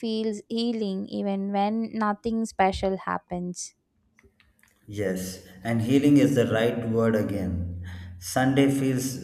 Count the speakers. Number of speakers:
2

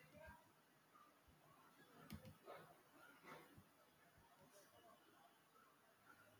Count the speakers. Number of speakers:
0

